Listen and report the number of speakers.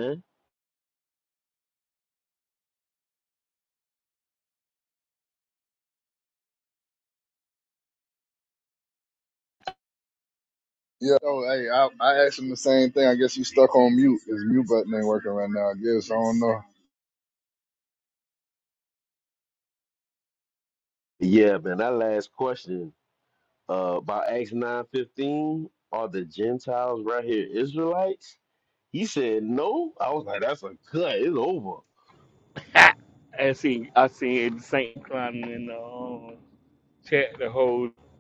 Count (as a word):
three